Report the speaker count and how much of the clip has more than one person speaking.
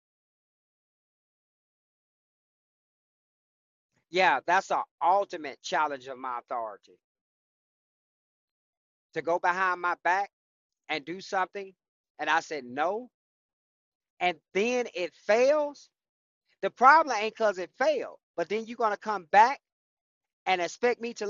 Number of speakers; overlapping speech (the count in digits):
1, no overlap